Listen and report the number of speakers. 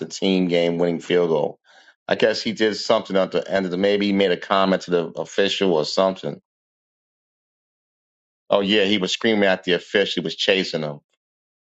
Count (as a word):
one